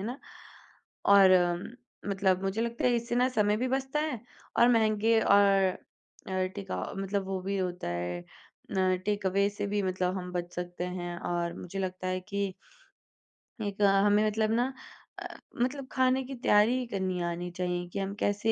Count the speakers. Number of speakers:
1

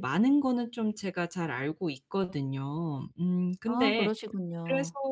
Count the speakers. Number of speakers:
2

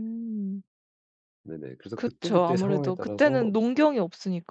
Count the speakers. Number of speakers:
2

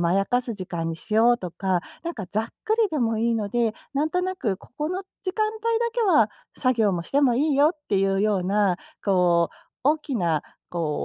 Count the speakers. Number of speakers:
1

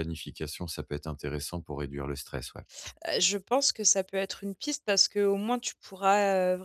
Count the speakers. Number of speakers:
2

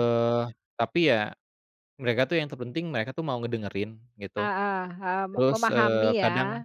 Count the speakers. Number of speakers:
2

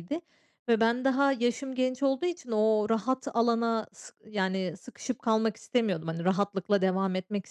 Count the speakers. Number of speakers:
1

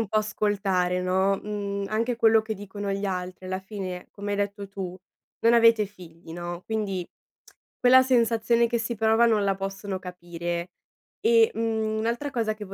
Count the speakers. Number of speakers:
1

